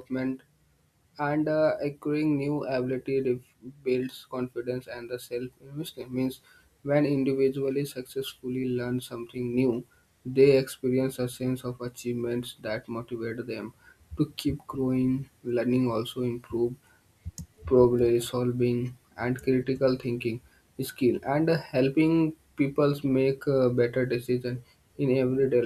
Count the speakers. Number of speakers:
1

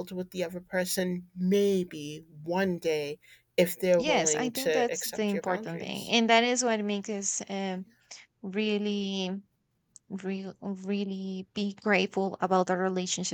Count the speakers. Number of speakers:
2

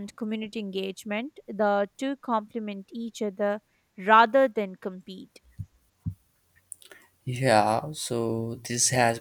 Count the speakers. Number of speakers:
2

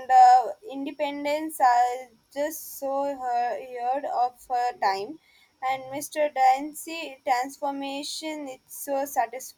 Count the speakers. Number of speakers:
1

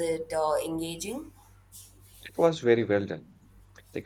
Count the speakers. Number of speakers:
2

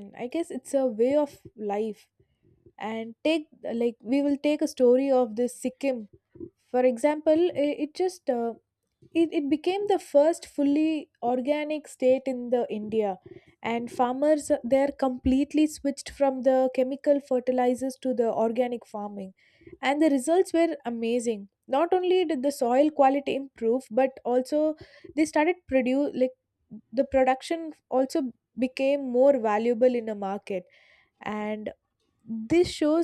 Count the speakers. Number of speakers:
1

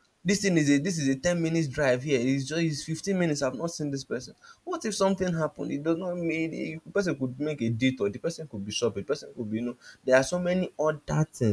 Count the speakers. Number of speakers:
1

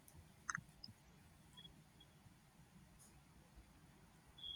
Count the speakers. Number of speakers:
0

